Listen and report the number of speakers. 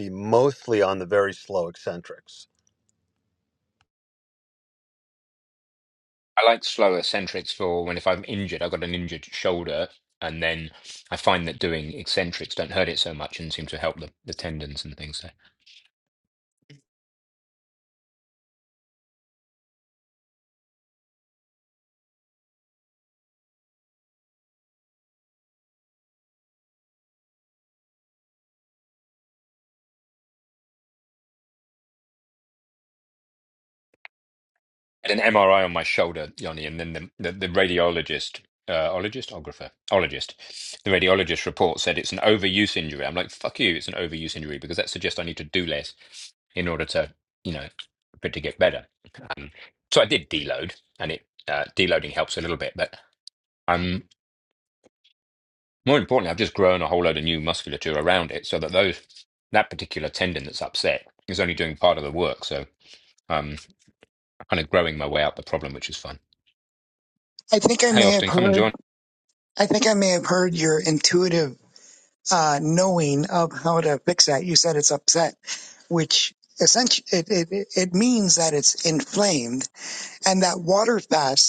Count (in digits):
3